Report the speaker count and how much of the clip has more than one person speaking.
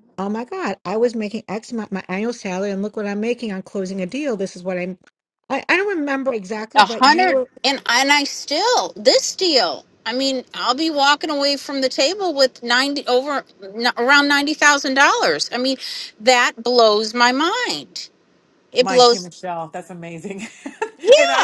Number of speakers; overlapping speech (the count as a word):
three, about 7%